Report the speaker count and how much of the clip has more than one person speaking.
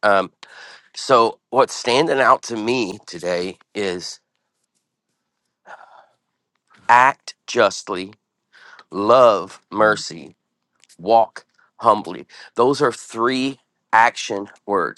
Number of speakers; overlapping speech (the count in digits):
1, no overlap